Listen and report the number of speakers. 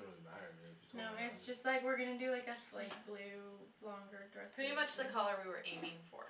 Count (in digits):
3